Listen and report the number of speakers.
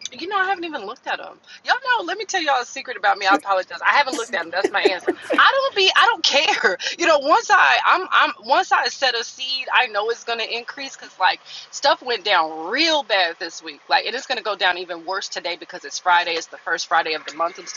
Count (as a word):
one